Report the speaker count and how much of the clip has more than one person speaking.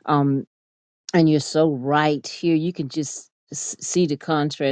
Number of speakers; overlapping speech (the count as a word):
one, no overlap